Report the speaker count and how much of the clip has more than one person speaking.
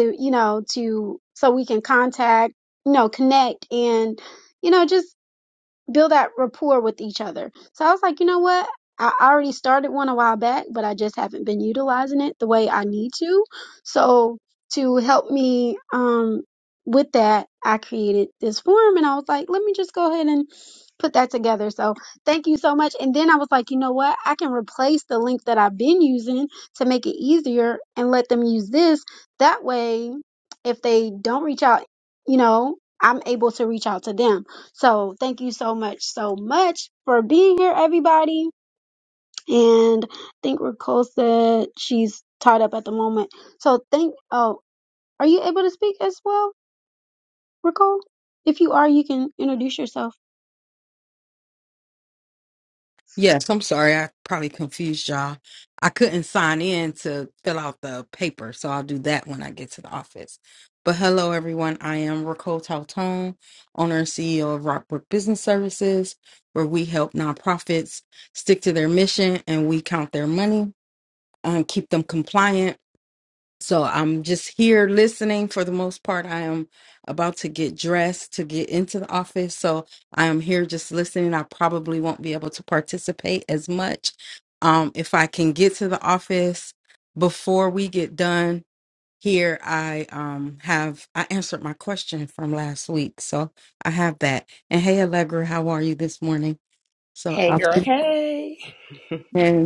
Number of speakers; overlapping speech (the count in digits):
3, under 1%